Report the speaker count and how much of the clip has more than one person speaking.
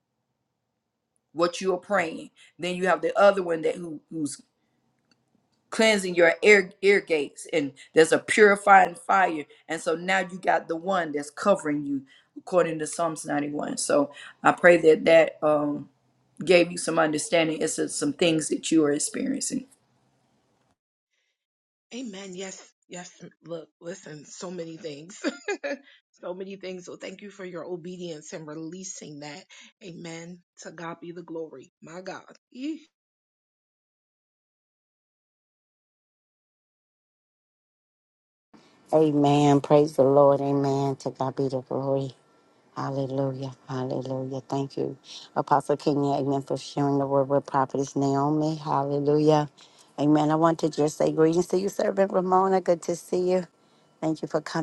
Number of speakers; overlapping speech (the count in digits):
3, no overlap